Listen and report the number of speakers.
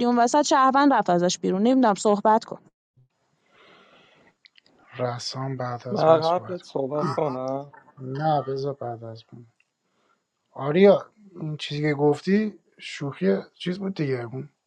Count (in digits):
3